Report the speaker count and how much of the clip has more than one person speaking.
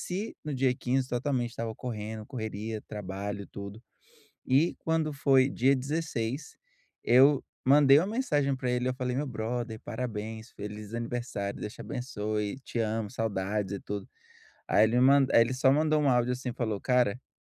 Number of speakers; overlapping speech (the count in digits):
1, no overlap